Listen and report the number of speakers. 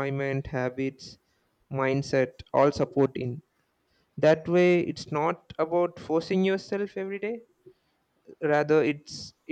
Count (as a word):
one